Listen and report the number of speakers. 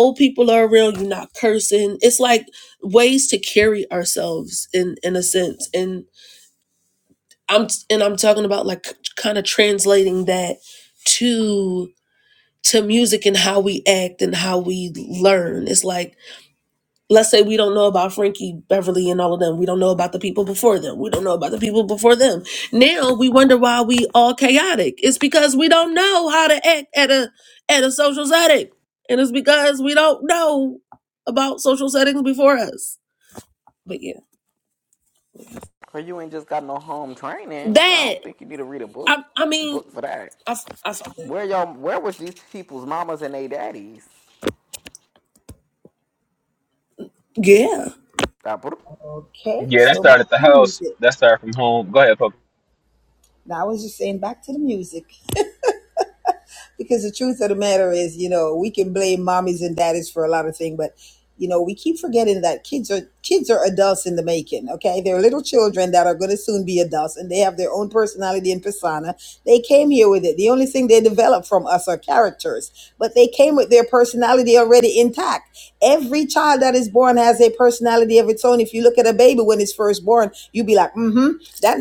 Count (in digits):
4